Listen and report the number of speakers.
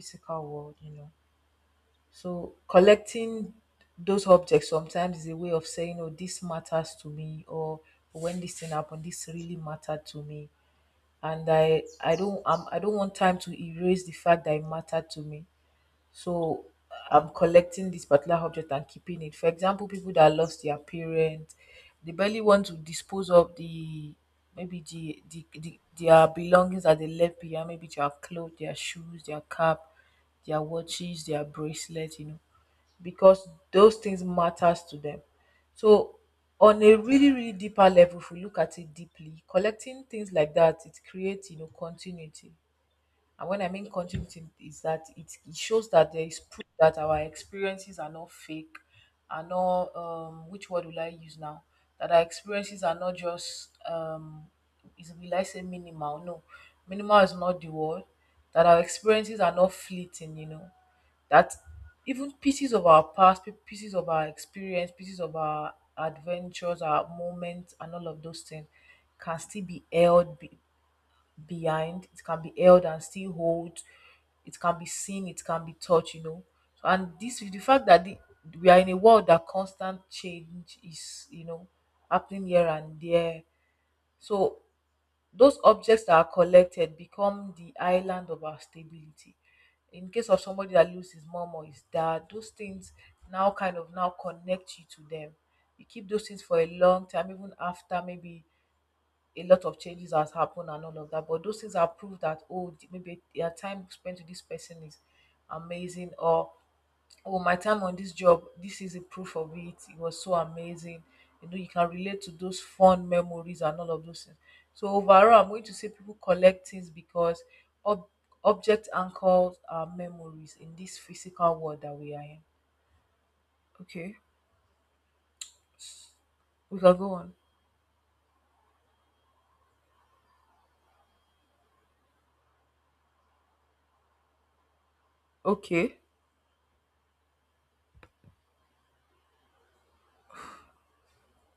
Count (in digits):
1